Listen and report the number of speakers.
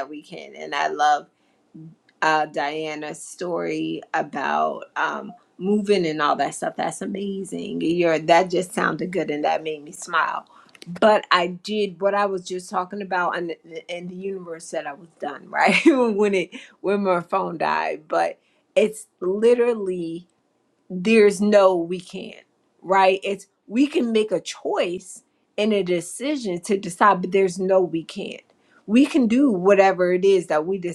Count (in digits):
1